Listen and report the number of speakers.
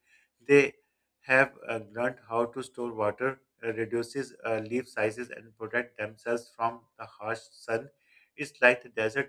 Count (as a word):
one